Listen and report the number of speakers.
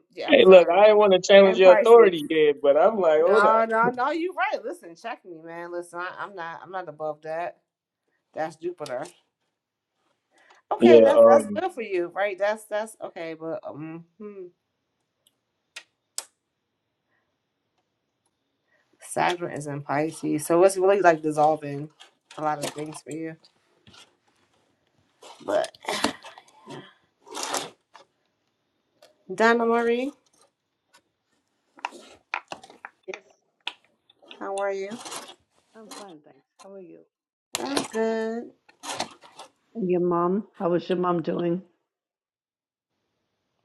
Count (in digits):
3